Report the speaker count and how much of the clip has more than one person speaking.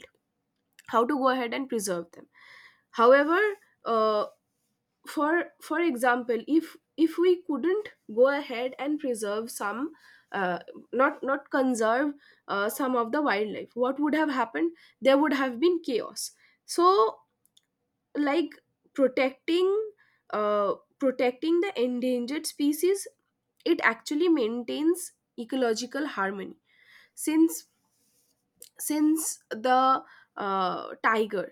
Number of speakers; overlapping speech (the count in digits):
1, no overlap